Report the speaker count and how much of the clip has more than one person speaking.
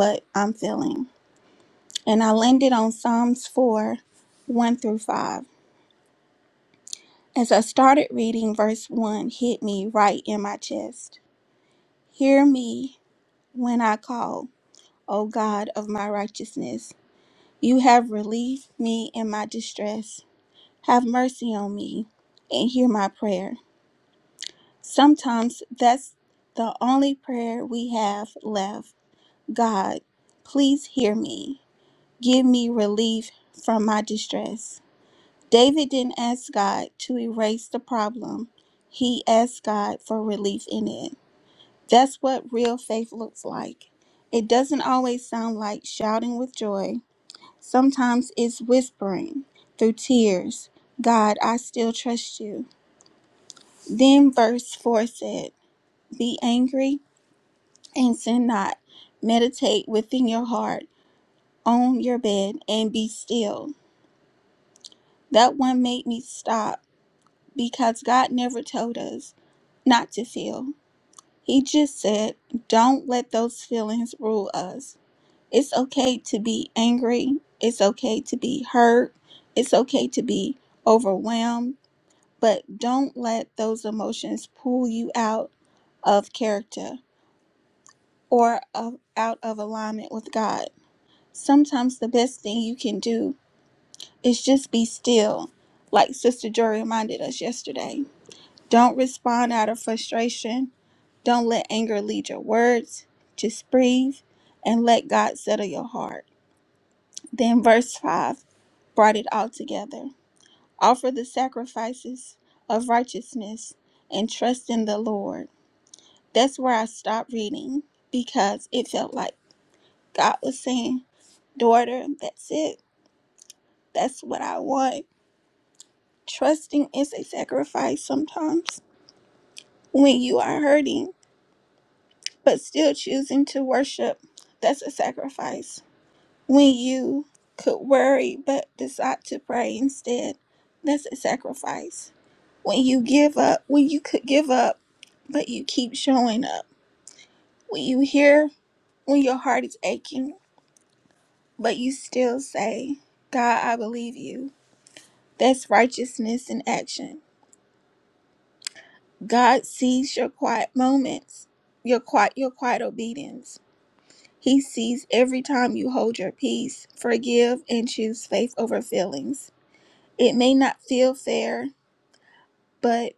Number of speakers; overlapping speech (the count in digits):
1, no overlap